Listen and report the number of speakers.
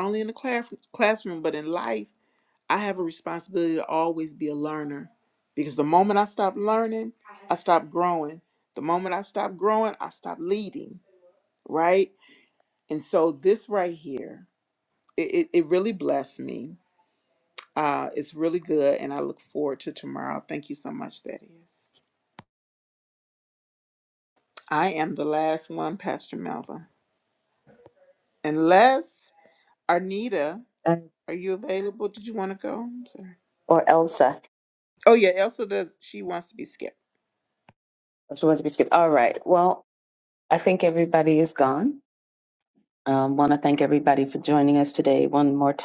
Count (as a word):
two